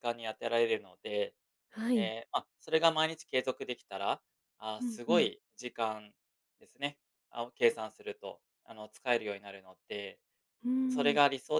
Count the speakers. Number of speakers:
two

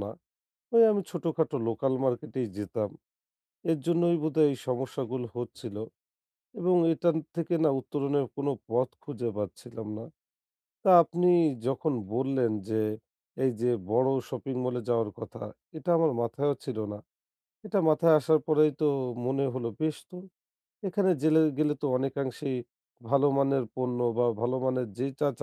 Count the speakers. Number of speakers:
one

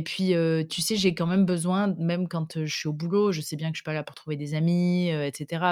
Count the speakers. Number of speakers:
one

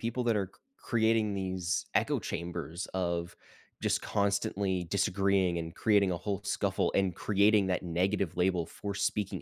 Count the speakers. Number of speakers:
one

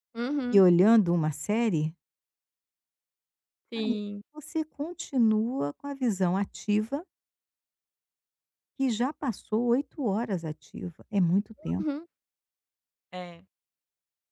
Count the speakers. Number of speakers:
two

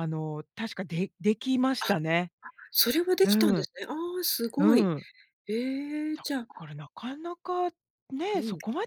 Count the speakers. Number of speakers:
two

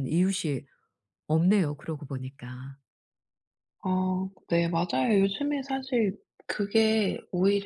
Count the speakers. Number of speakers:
two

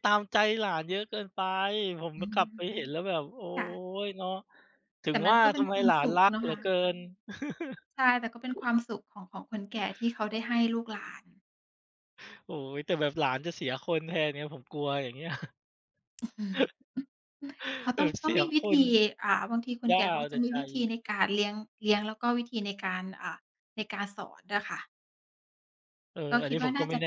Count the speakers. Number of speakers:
two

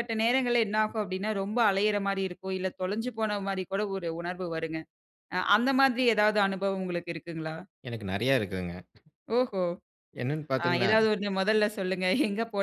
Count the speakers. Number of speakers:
two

